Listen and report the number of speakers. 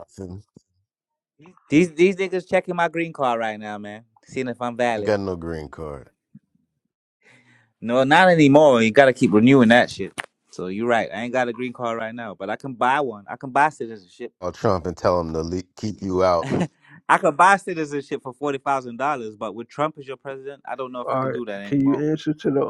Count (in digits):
3